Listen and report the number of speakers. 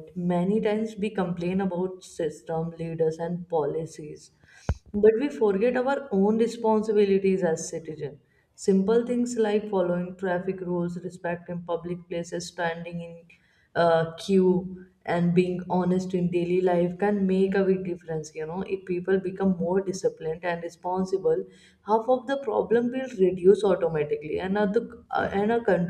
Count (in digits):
1